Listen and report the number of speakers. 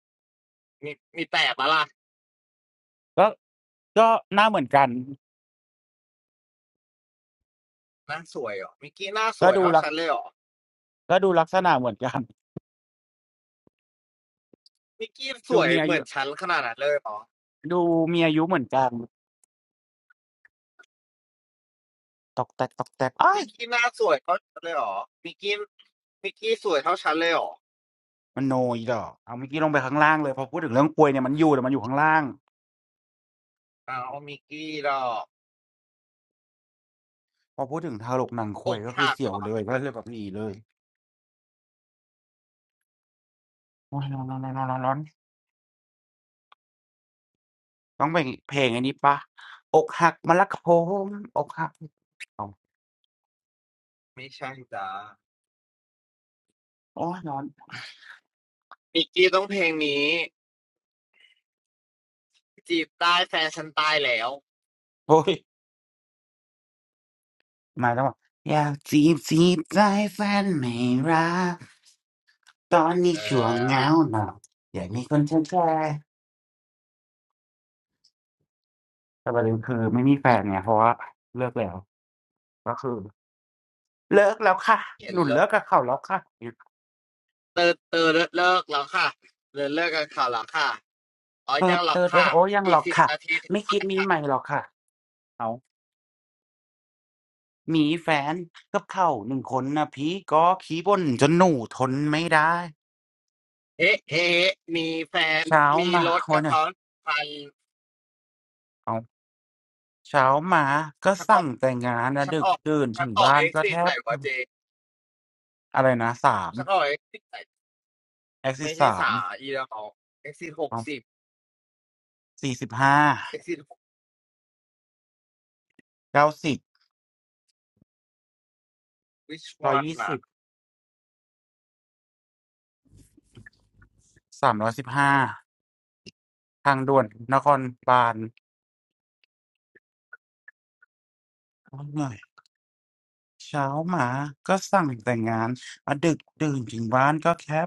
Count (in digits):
2